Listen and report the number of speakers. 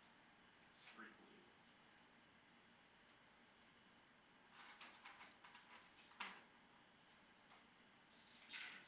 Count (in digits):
1